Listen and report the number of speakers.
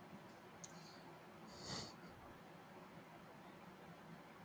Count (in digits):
0